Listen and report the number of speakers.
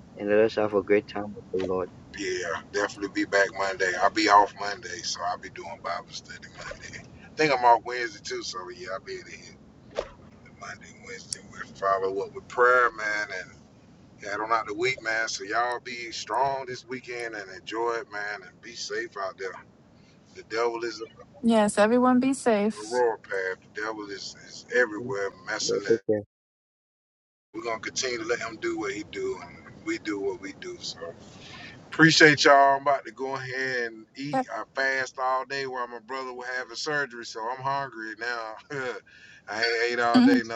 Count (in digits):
3